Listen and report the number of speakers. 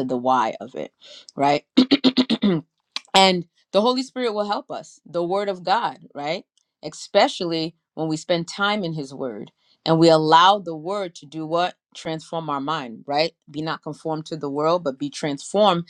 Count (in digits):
1